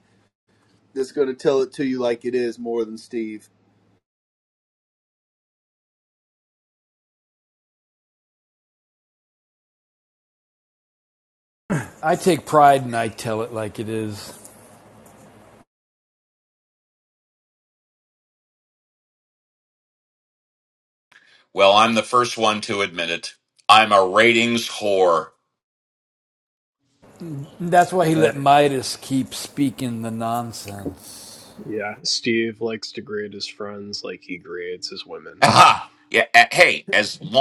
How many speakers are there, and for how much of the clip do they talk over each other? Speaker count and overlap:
4, about 1%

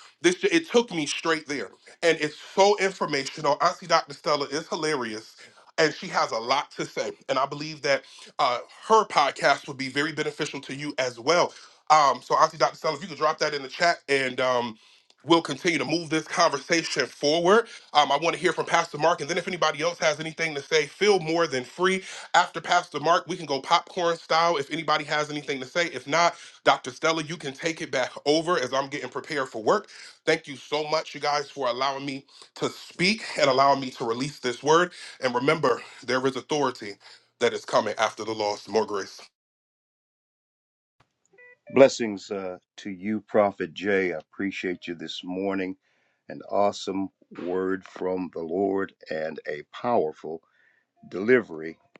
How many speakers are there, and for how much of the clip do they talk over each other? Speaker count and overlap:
2, no overlap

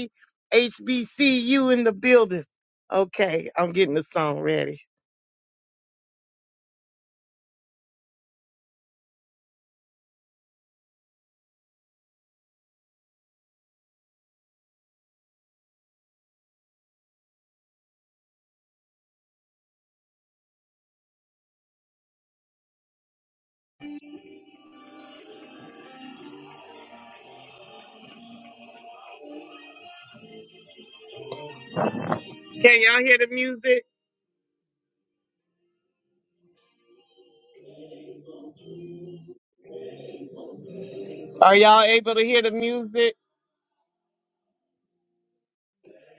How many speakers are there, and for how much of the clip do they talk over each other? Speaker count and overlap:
1, no overlap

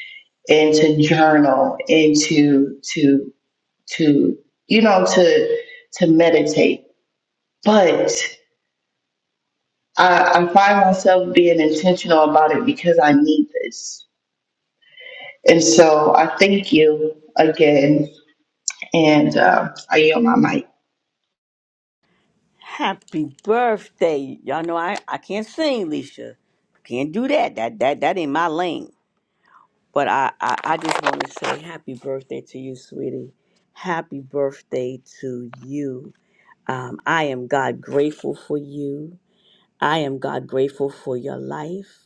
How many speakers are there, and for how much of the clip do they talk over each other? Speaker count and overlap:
2, no overlap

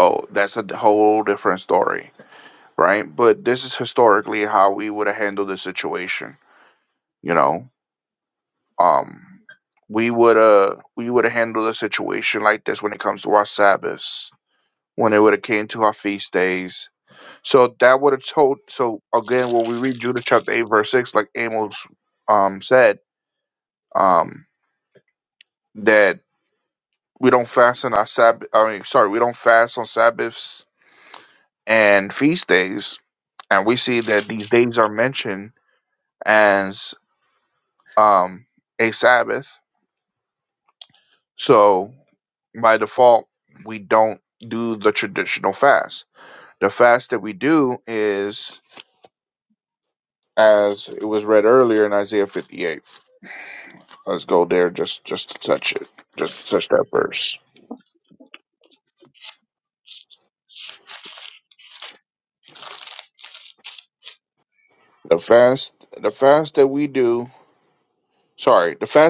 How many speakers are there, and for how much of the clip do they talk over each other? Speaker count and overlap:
1, no overlap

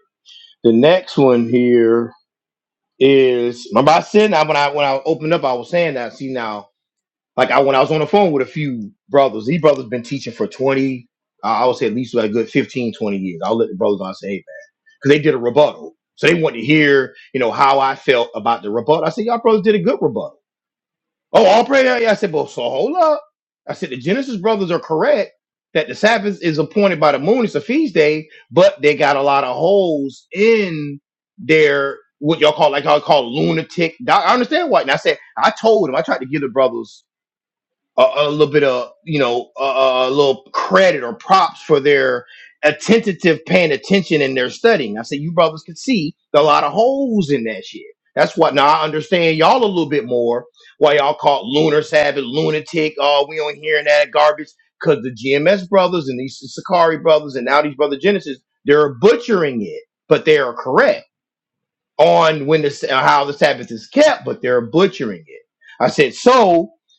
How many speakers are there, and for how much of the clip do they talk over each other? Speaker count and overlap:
1, no overlap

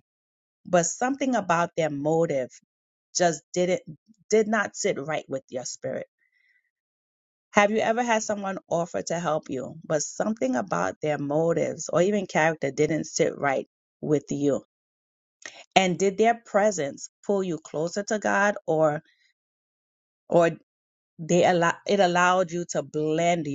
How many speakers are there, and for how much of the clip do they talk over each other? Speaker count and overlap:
1, no overlap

